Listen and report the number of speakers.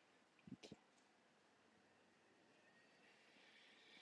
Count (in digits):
0